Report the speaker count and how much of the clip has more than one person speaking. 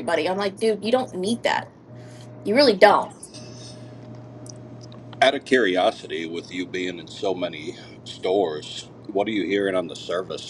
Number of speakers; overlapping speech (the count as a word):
two, no overlap